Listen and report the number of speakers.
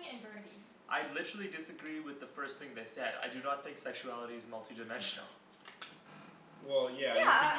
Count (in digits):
3